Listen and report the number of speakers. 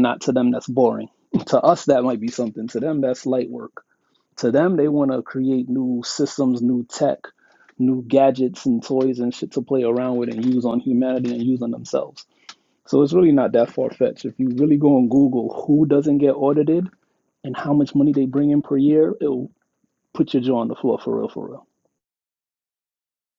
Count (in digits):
1